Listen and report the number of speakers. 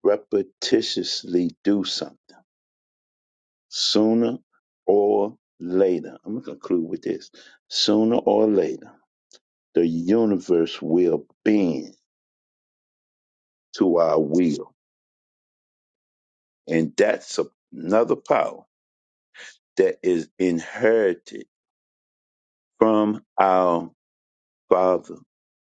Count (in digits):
1